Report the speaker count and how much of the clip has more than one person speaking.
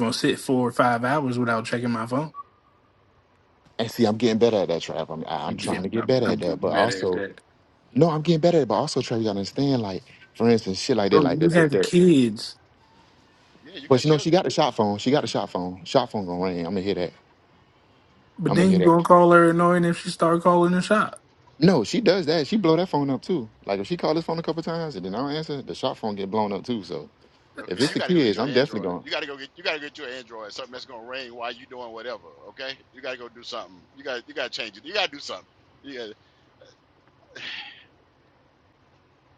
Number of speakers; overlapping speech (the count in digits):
3, about 12%